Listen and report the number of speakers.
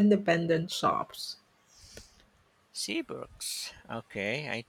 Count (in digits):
2